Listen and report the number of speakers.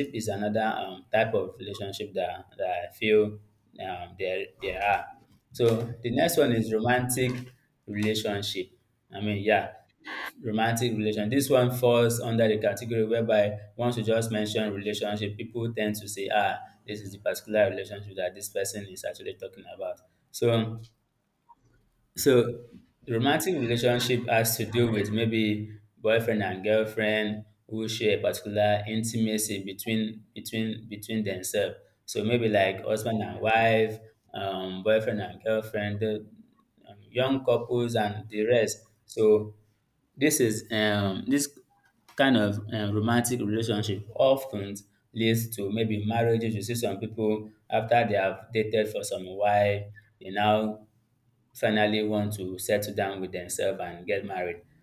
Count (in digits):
1